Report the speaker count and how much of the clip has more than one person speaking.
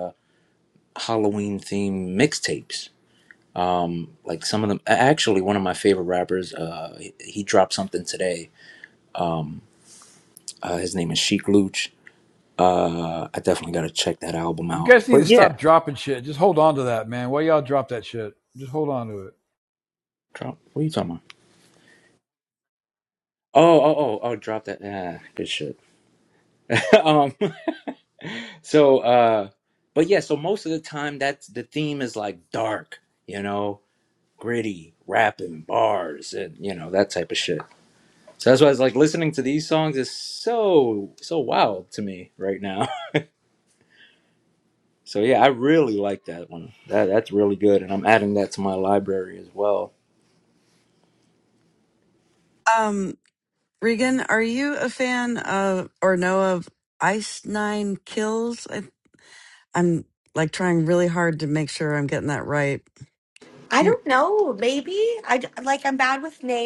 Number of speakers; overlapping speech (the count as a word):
four, about 1%